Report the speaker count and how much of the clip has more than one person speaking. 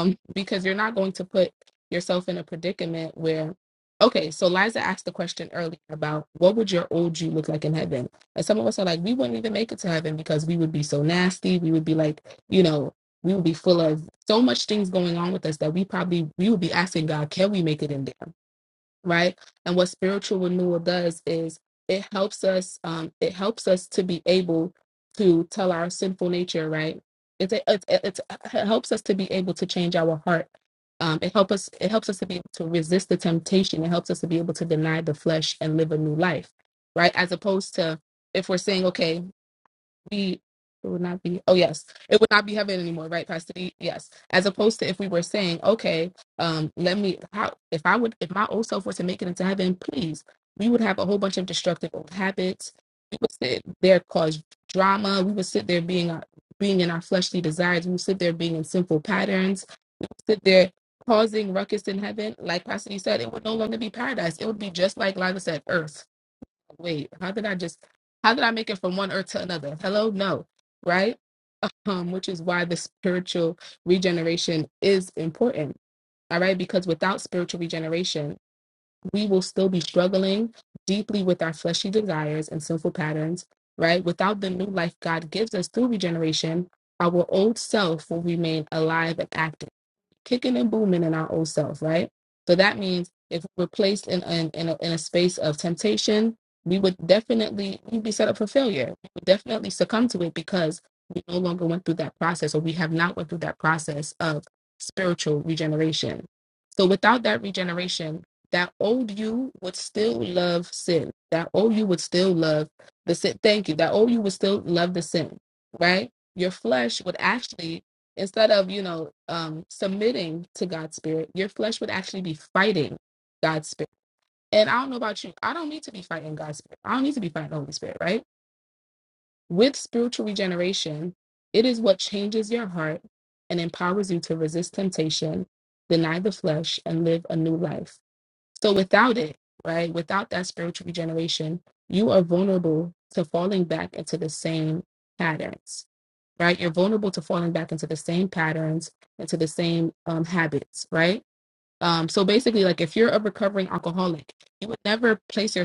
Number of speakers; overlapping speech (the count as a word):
one, no overlap